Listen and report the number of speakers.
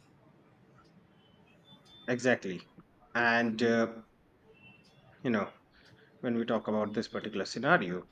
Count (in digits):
1